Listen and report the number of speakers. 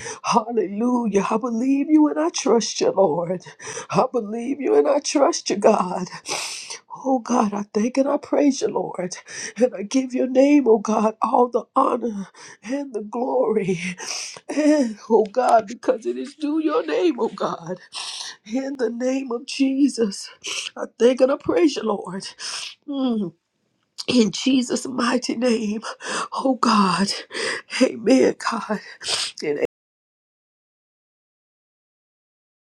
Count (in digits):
1